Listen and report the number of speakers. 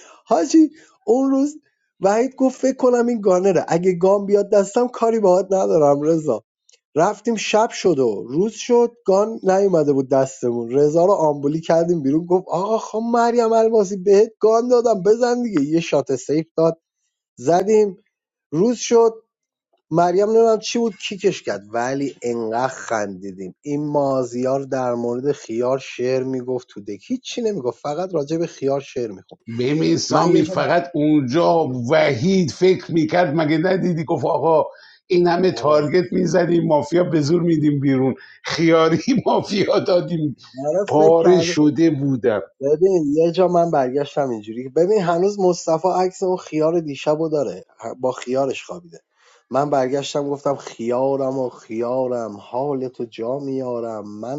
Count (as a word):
two